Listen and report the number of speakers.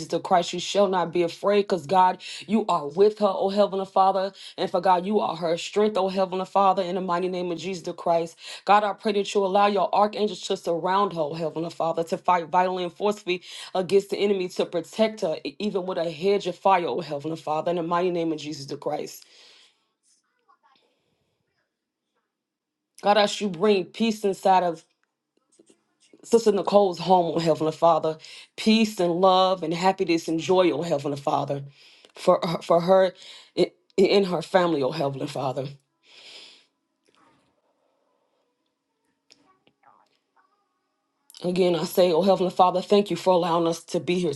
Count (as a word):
one